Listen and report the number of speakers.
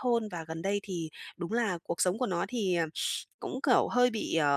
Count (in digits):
1